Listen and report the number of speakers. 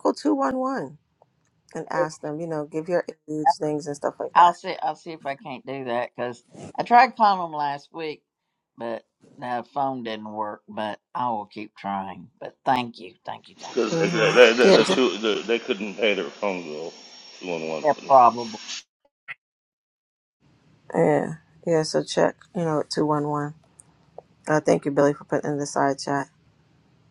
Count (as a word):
three